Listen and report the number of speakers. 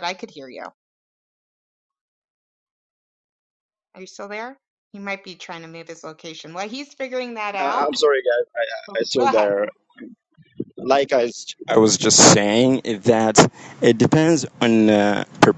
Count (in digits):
2